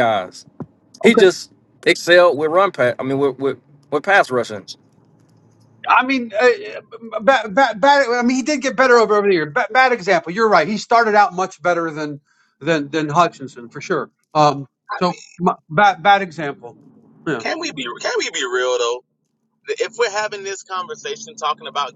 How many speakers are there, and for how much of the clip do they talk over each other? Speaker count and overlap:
3, about 1%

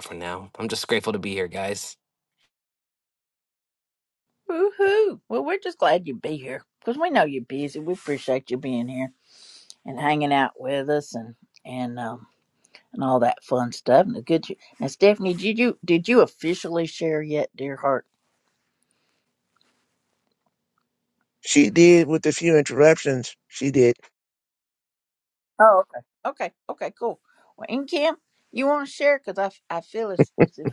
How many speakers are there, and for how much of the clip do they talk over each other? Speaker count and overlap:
3, no overlap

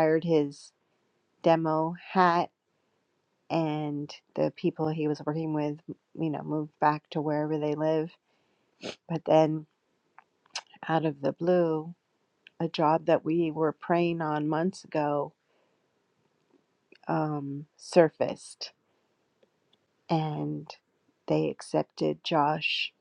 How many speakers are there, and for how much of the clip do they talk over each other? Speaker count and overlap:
1, no overlap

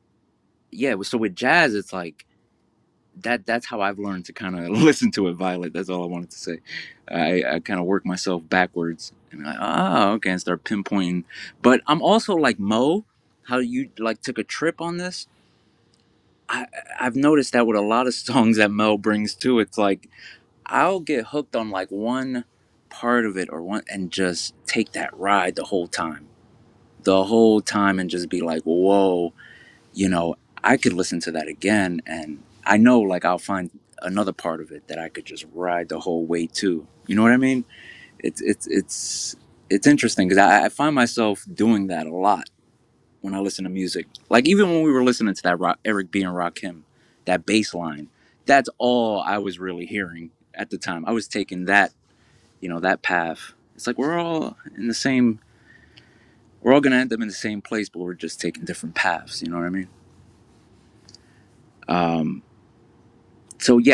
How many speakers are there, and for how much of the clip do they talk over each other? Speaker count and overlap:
1, no overlap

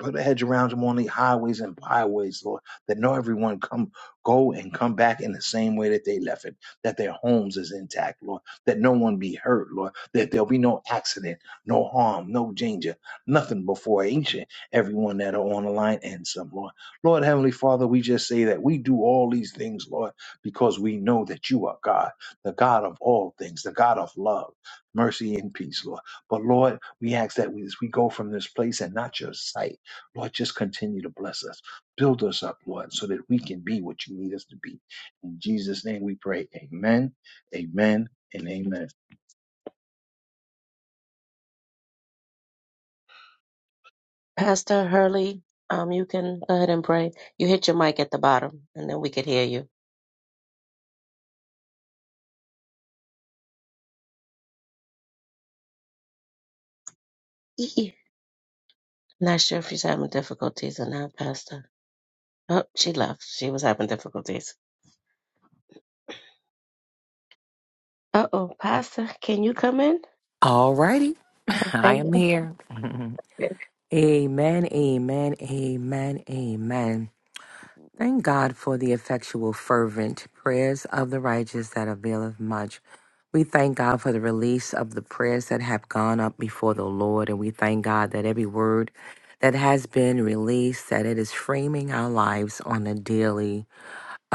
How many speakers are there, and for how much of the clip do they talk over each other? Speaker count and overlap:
3, under 1%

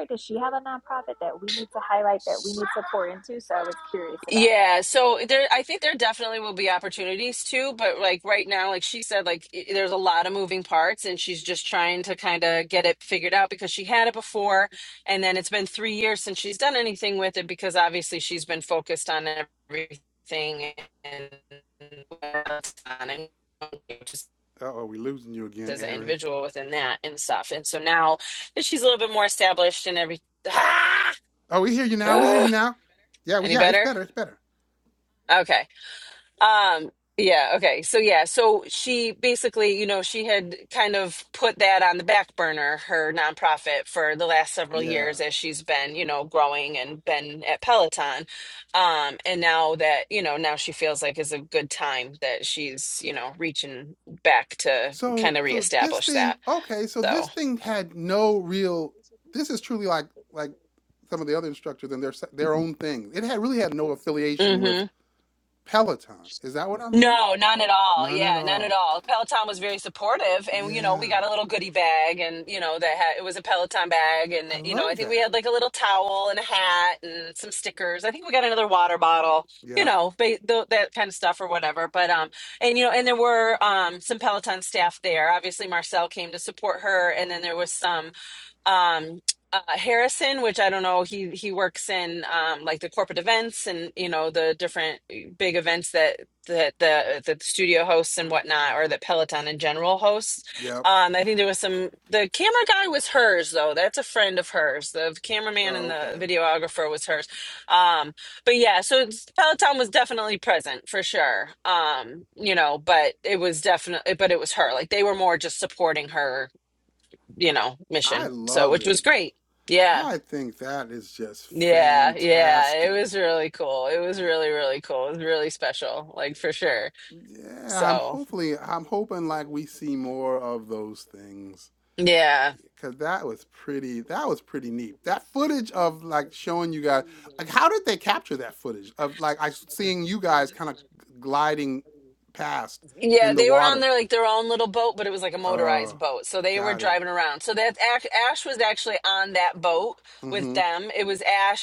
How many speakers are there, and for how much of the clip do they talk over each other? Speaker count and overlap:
3, about 8%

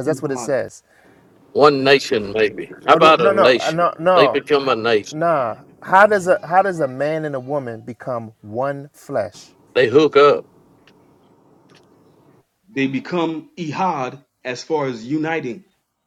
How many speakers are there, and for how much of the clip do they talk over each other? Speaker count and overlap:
3, about 12%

